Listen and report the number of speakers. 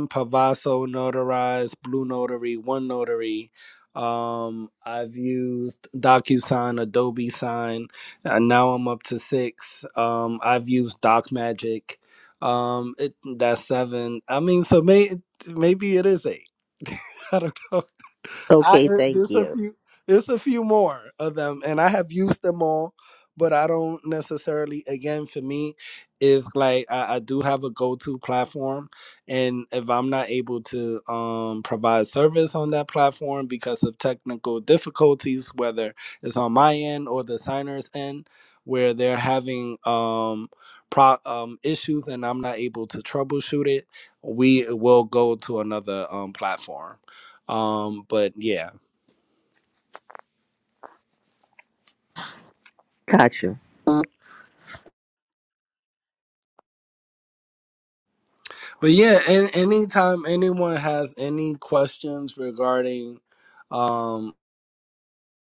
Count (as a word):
two